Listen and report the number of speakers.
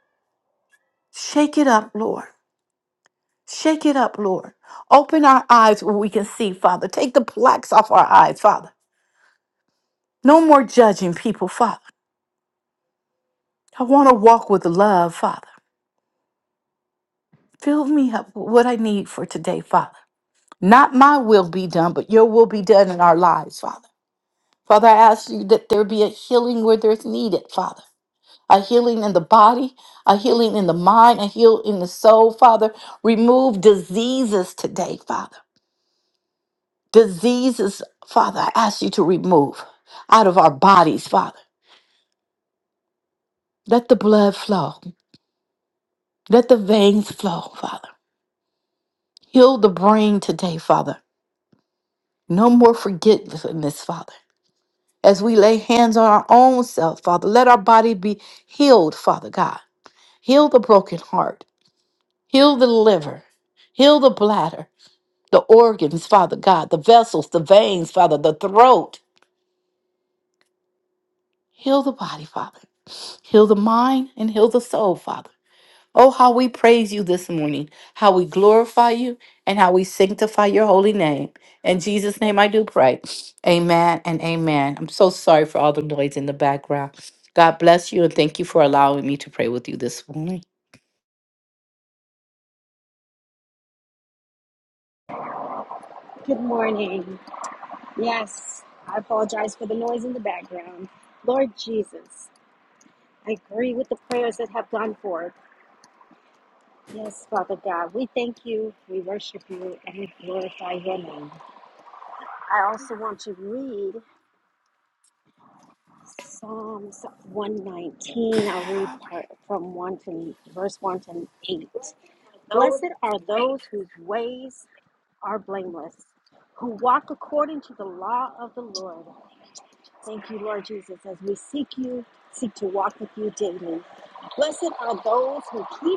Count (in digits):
2